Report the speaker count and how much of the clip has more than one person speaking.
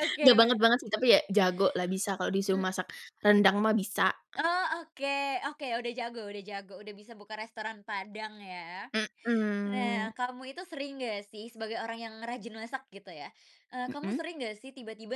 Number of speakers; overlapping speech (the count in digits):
2, about 8%